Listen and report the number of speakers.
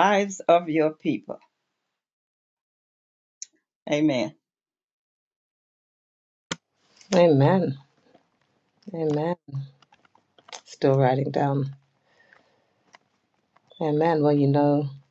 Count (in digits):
2